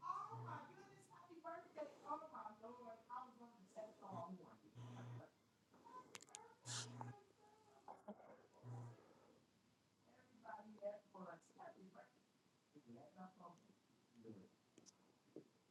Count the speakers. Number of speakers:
zero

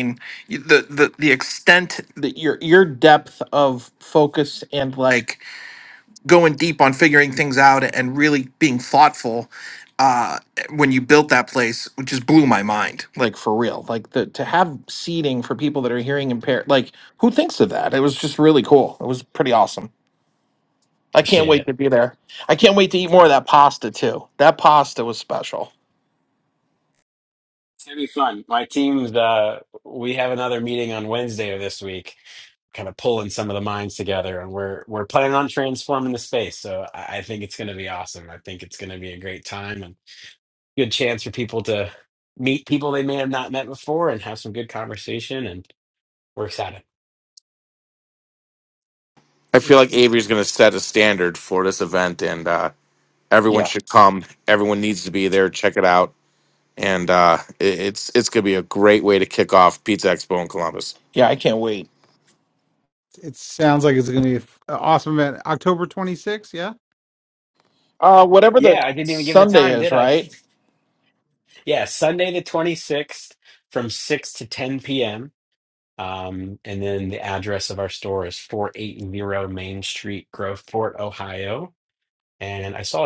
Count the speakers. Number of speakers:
four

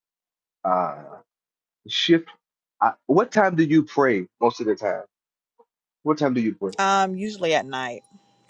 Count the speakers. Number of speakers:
two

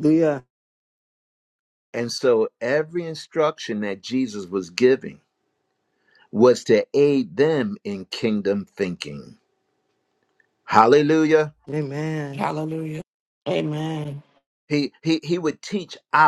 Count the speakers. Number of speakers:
three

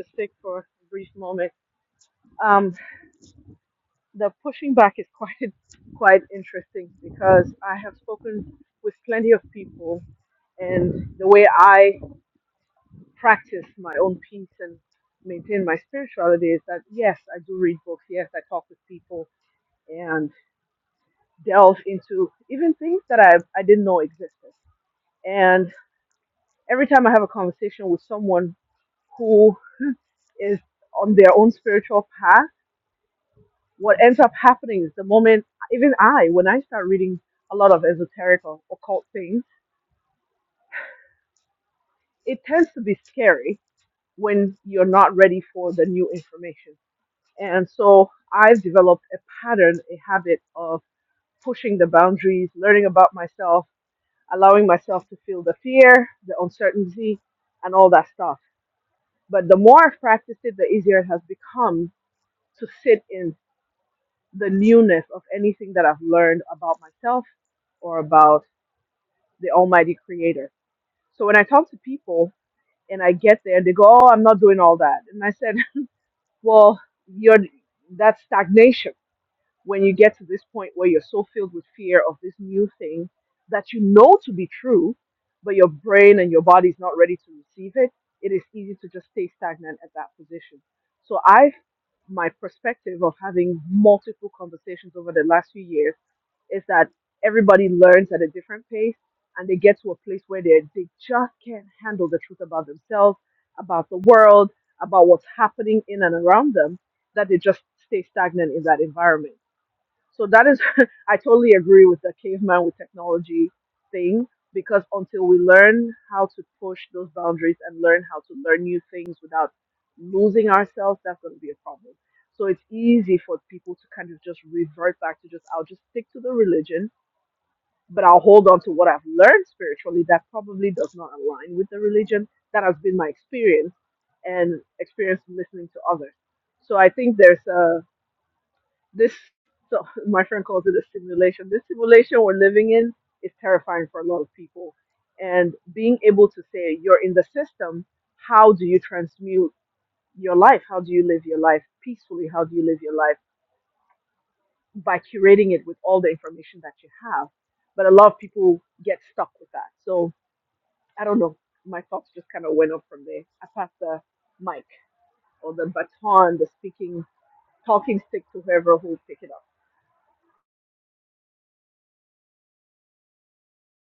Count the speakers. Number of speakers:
one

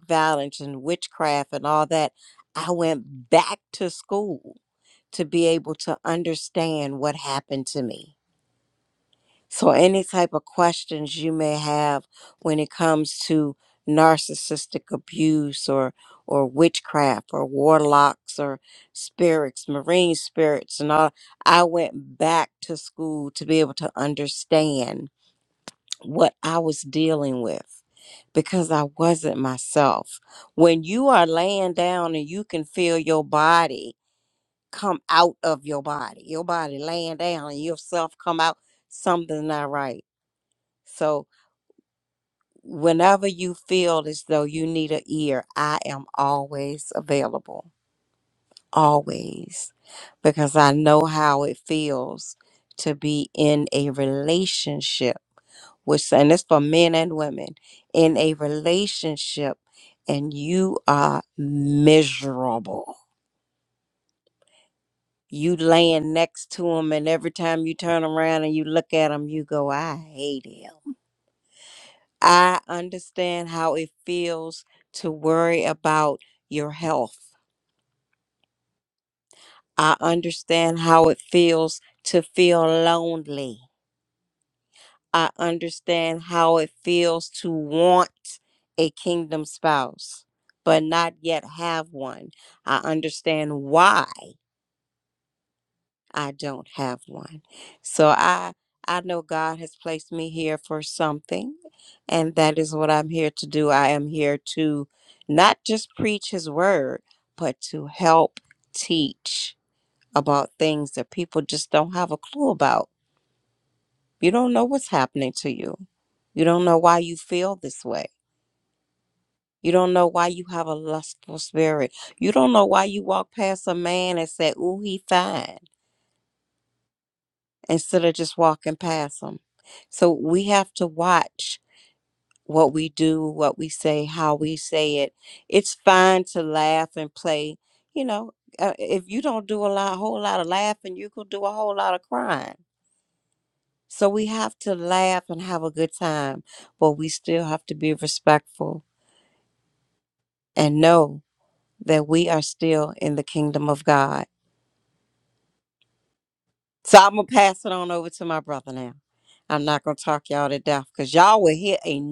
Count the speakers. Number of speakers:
one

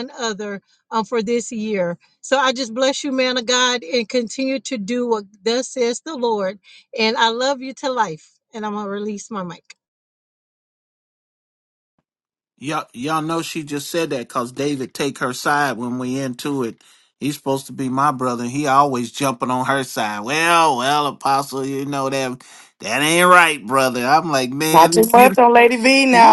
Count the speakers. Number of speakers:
three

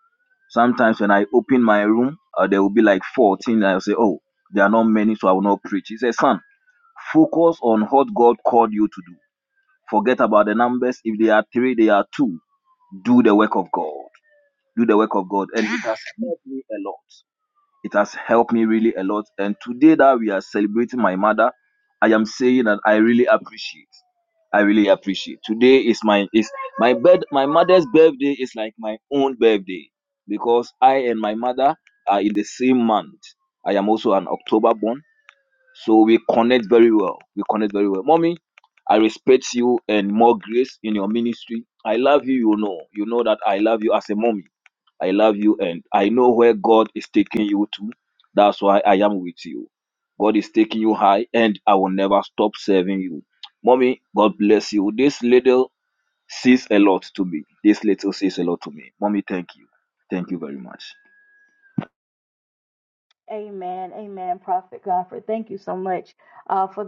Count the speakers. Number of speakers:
two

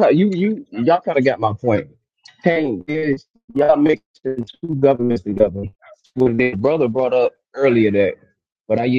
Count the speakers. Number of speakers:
one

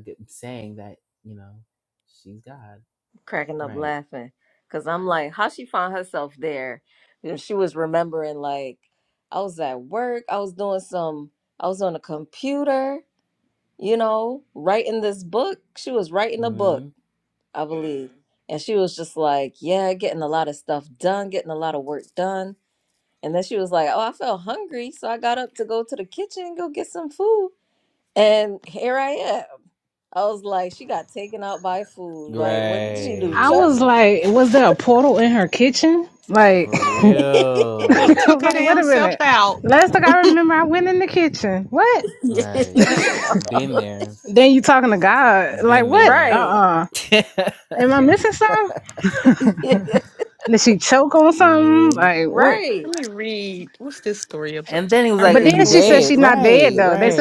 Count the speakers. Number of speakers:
four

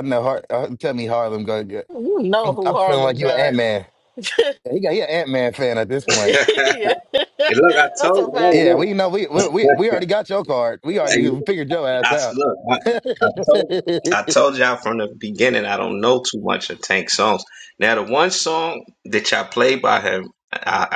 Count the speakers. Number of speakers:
three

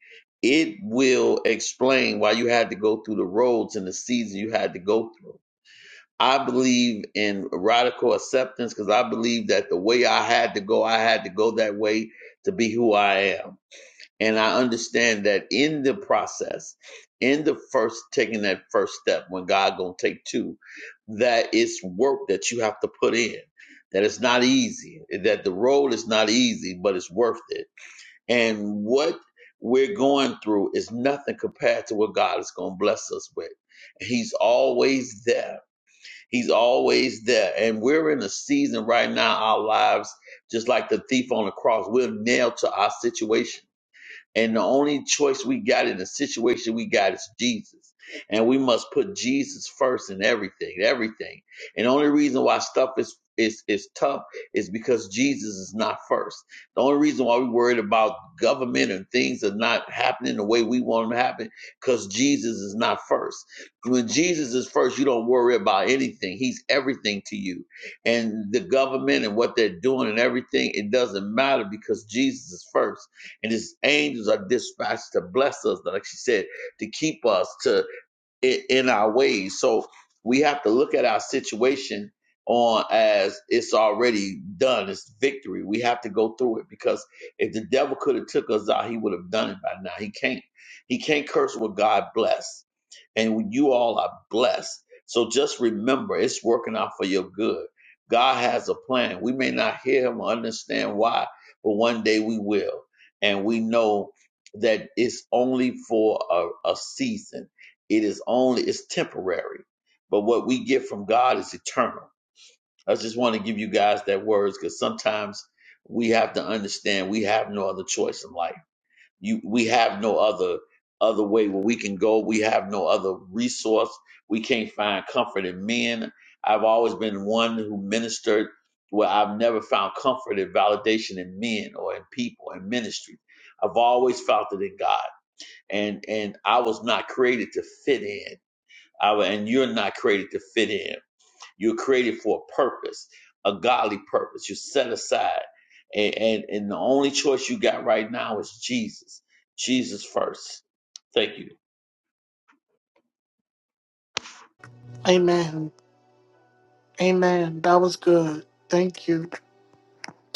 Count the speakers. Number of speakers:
two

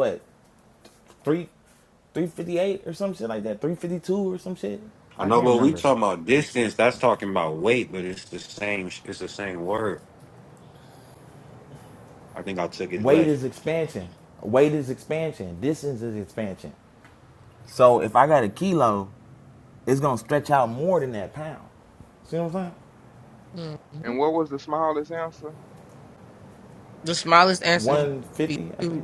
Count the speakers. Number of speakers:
four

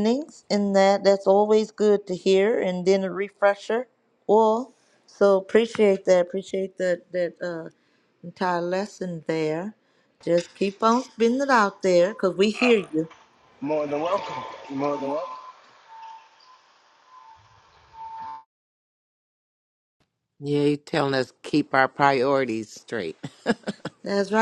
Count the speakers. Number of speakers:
three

